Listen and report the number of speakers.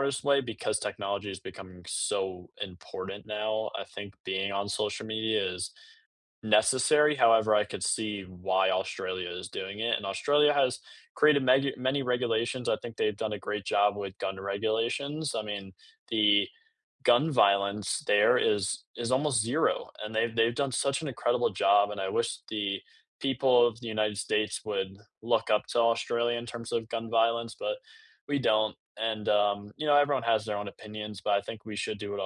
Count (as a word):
one